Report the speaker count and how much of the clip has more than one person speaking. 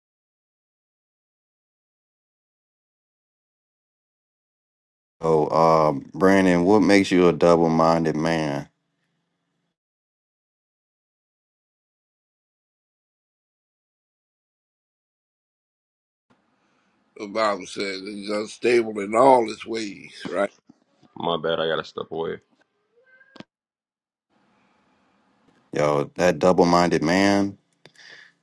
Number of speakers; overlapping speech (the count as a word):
three, no overlap